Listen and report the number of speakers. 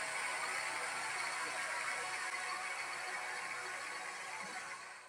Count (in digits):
0